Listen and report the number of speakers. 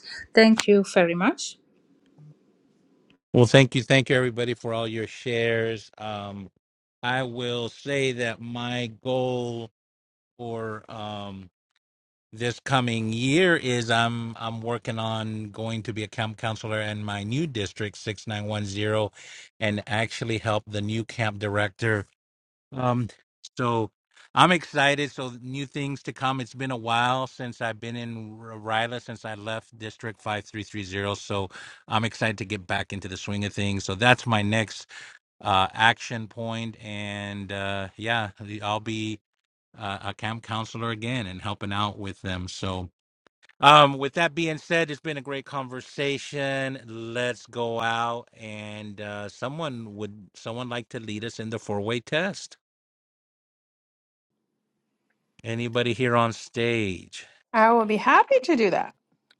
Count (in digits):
3